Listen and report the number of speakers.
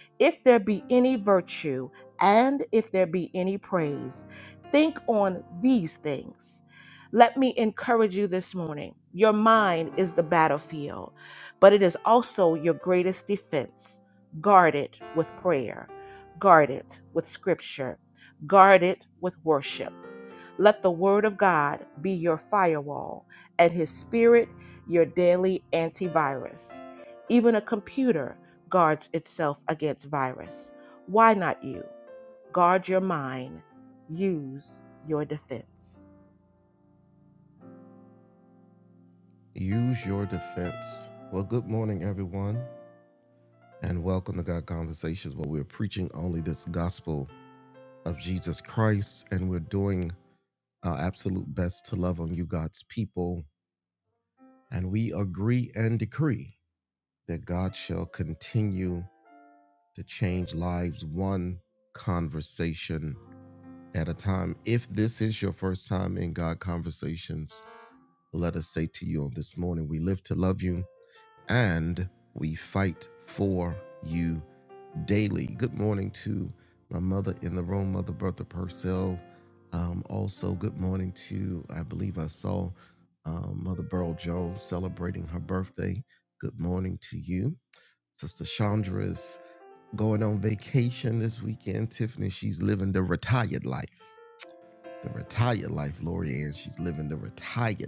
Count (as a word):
two